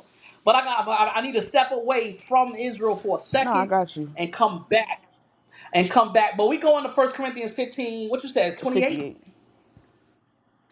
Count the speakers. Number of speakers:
two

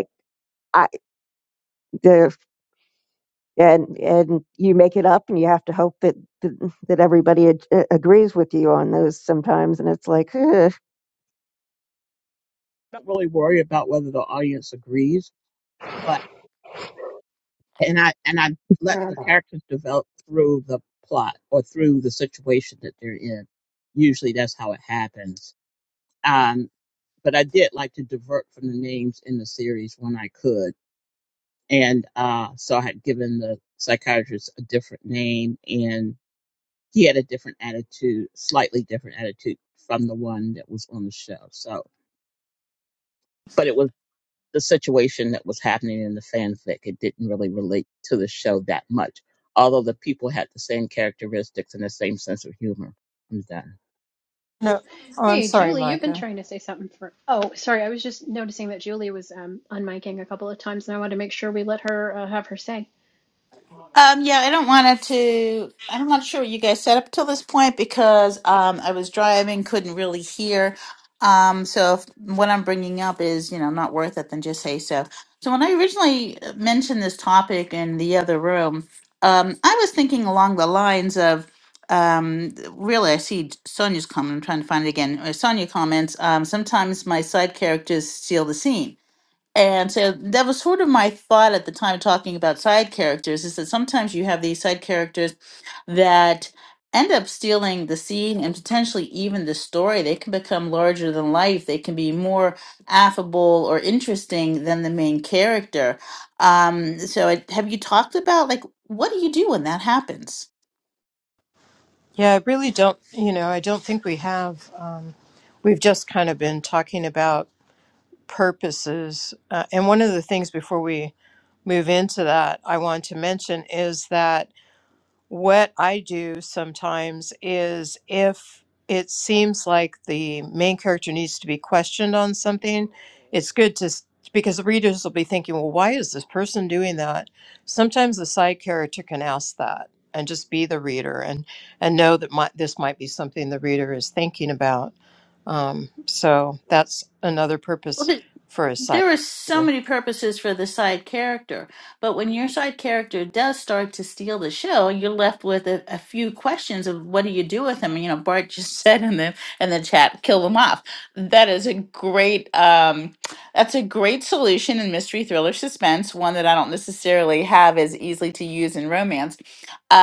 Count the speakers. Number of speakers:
five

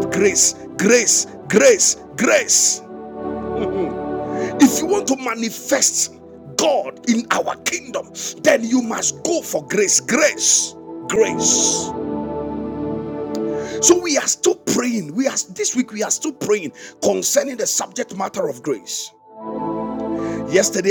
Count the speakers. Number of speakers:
one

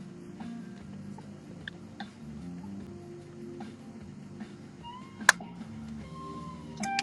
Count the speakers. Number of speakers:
zero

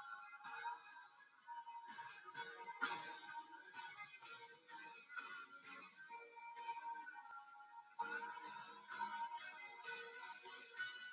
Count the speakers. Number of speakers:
zero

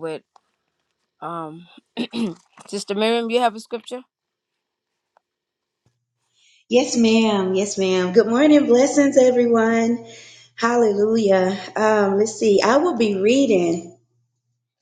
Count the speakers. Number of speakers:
two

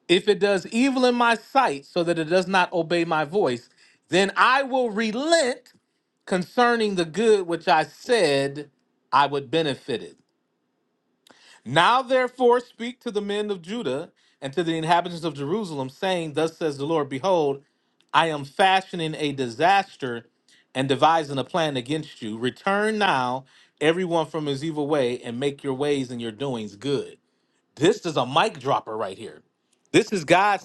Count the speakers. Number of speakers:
one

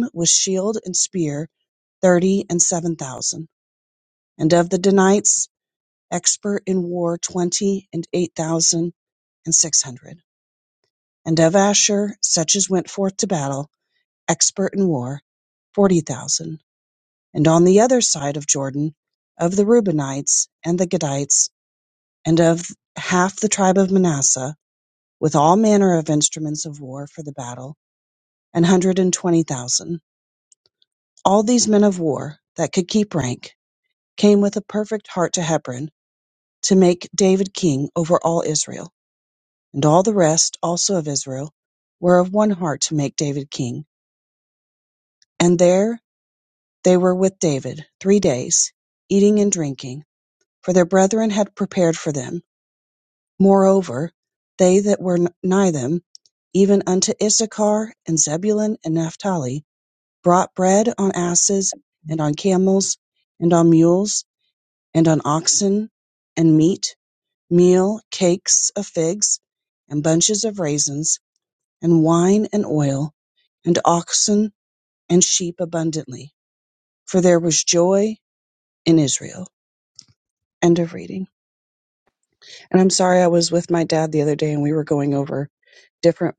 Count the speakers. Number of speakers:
one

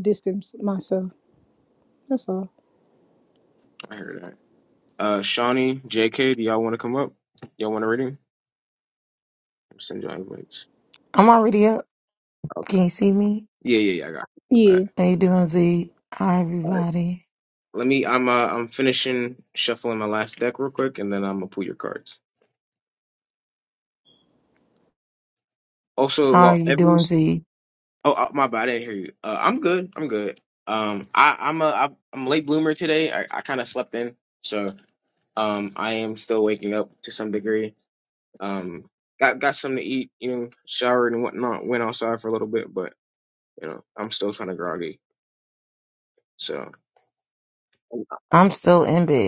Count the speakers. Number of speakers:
three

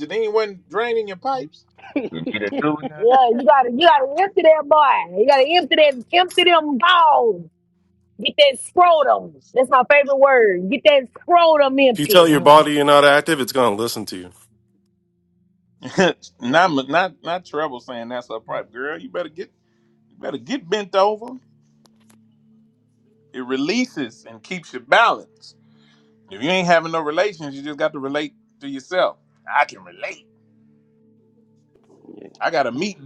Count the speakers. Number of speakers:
four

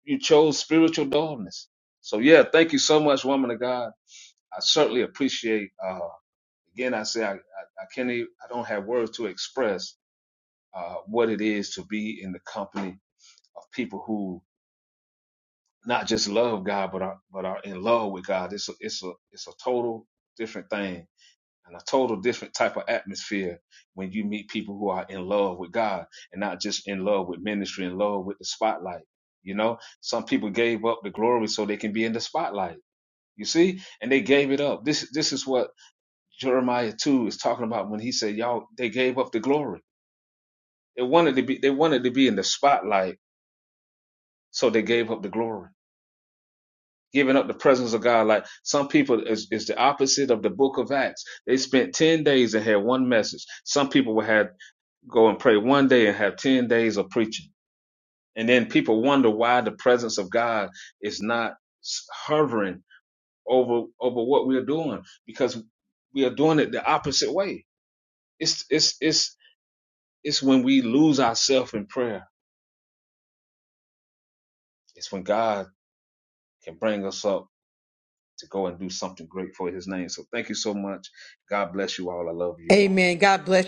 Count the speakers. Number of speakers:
two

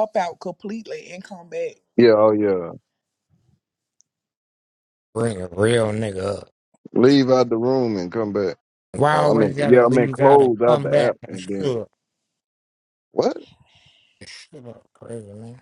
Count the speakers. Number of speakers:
three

